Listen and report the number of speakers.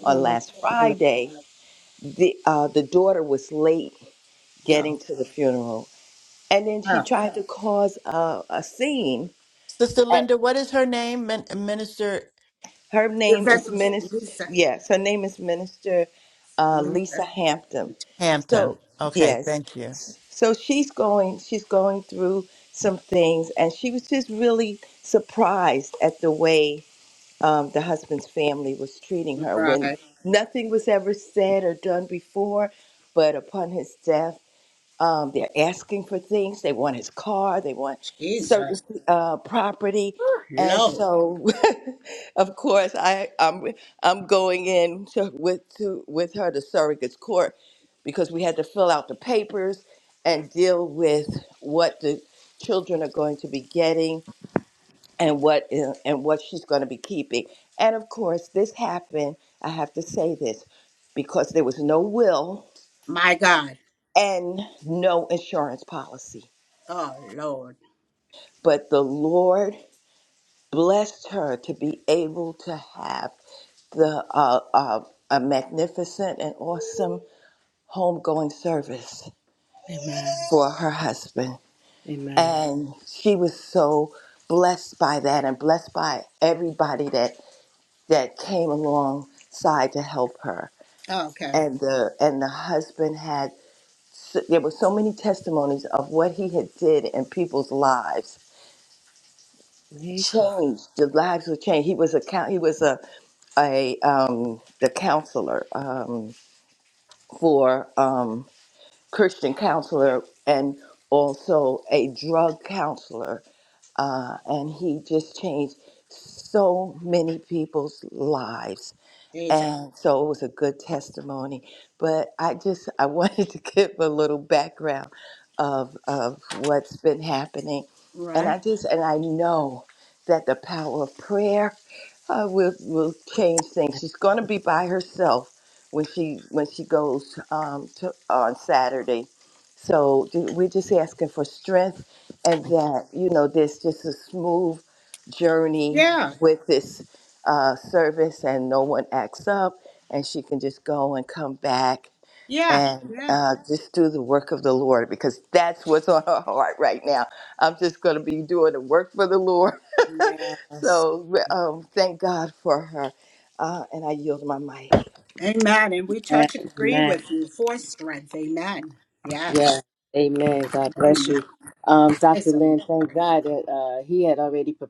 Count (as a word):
four